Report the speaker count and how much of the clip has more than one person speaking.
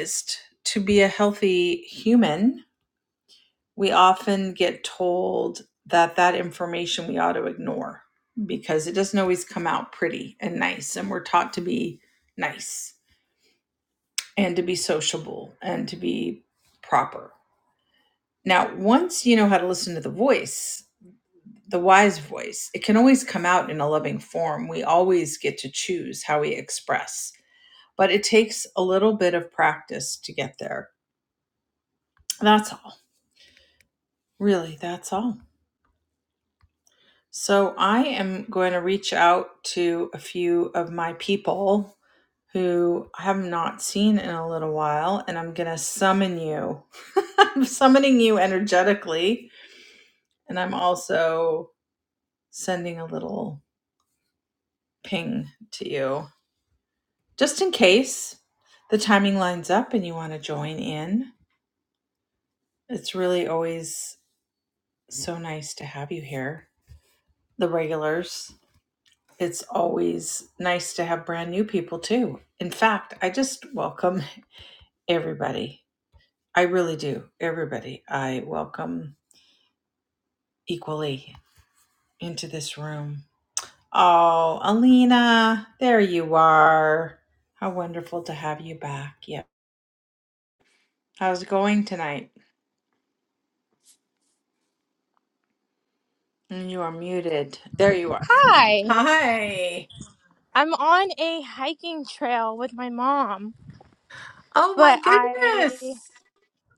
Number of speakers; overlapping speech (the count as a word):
two, about 1%